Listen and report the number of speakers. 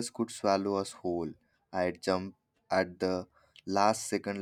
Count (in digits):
1